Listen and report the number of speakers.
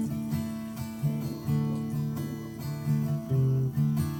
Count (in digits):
0